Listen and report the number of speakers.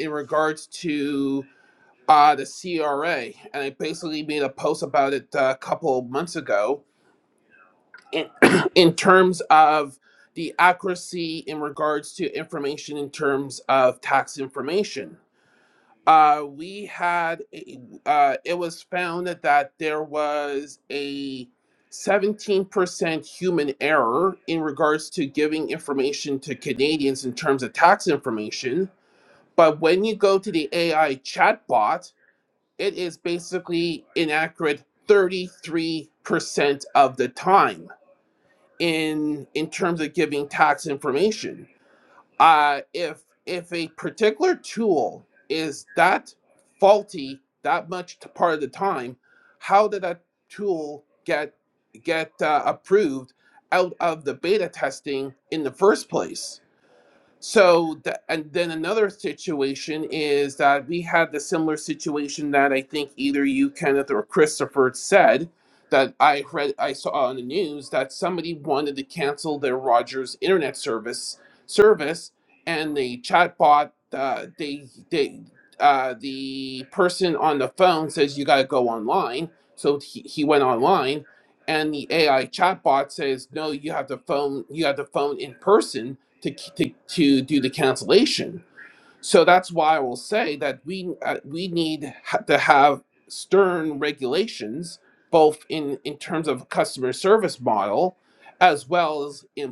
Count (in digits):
1